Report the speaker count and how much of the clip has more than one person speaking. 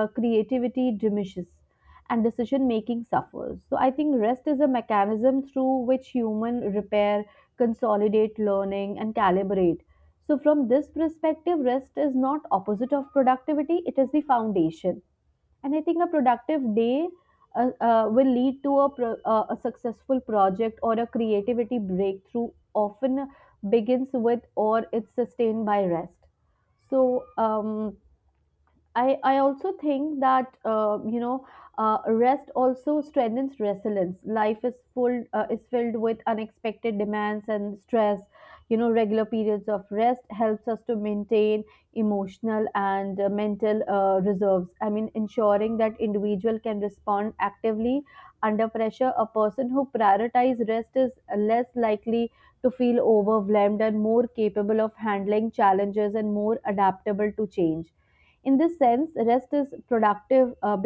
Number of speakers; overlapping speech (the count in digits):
1, no overlap